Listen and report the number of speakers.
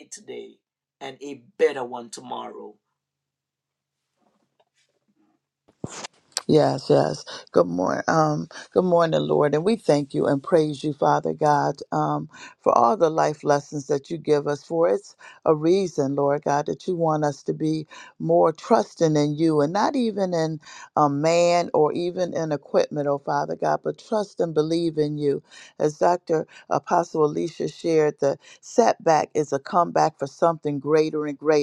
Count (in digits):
2